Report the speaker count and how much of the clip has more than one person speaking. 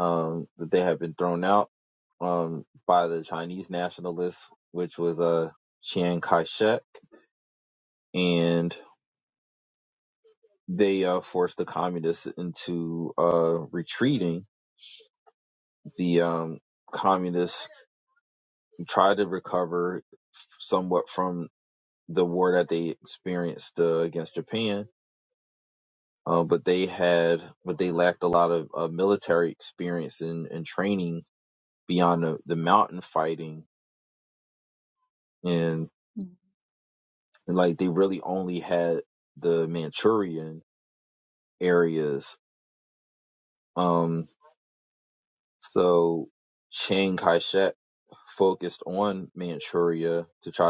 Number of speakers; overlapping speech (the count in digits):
1, no overlap